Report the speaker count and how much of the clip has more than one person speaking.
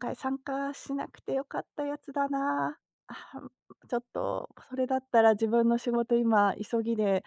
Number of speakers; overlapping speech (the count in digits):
1, no overlap